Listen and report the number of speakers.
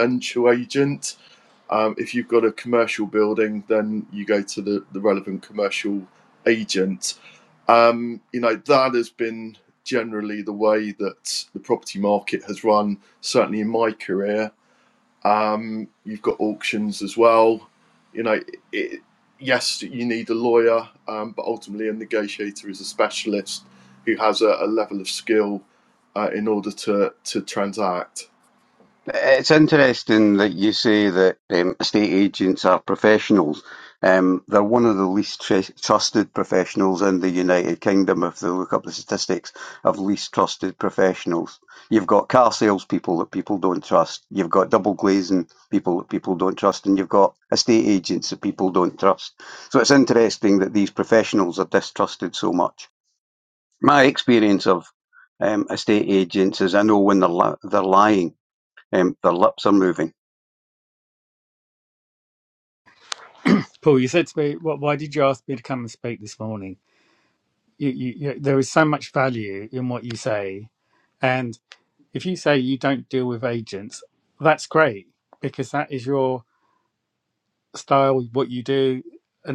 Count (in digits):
3